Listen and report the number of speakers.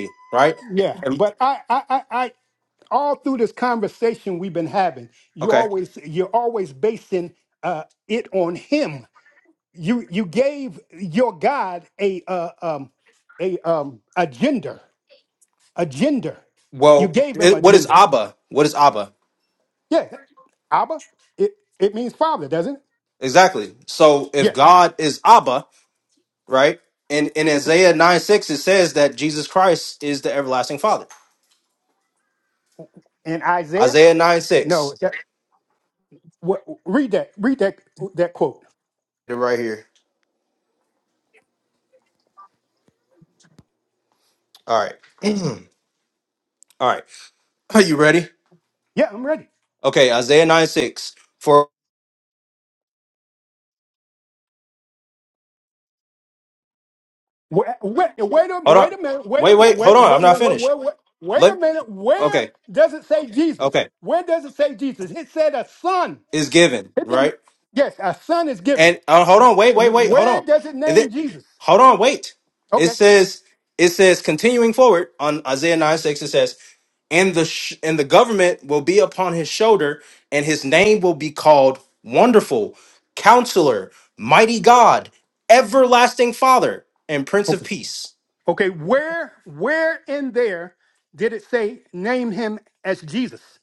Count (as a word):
two